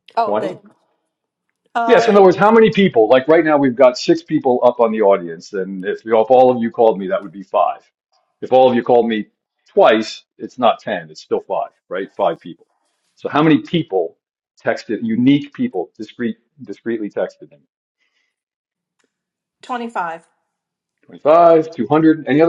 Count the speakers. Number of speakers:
two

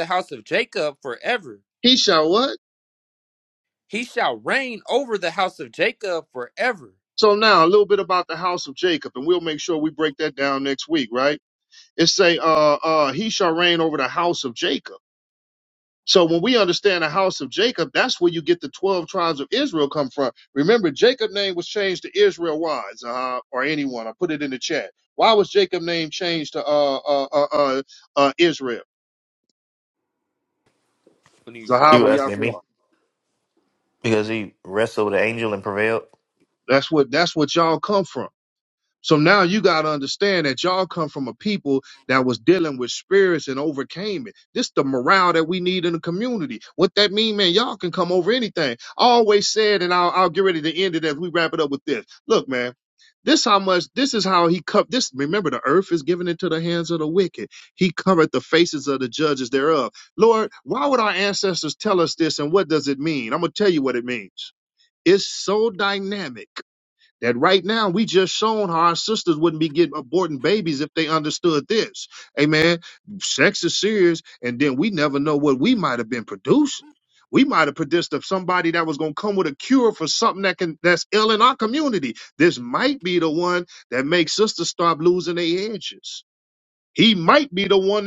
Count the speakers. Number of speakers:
three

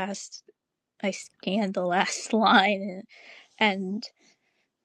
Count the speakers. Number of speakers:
one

